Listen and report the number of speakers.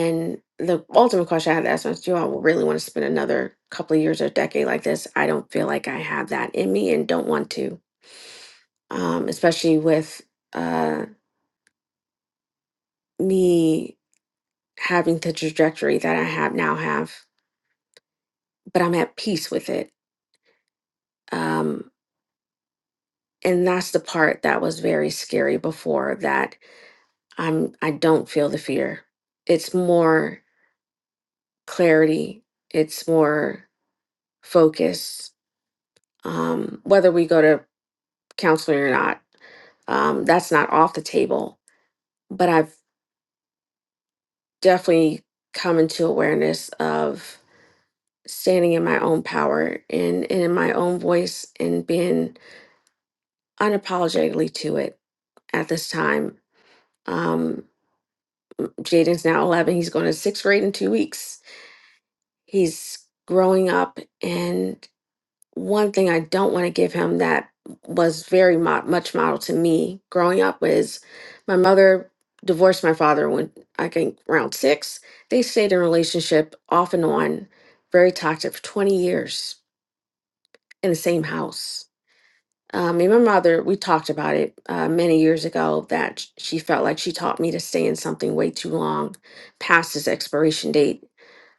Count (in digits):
1